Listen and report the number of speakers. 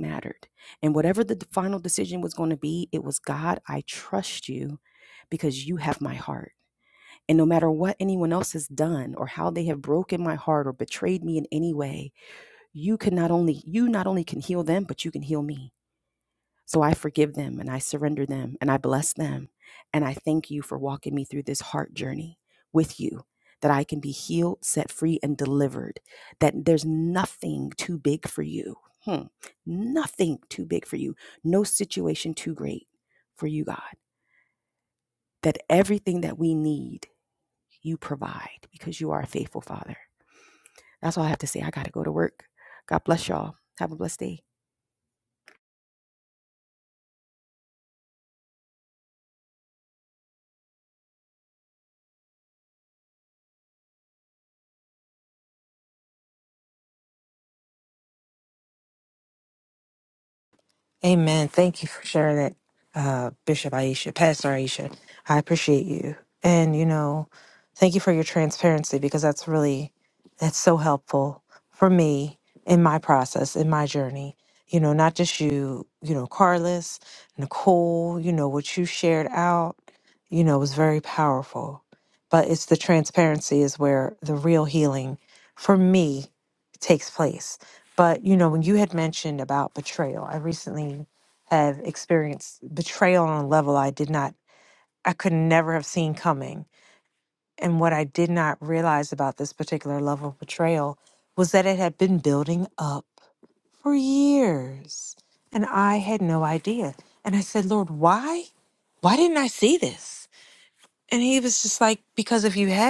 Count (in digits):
2